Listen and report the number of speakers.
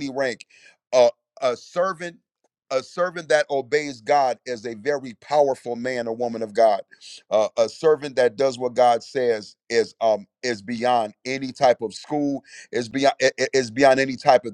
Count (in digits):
1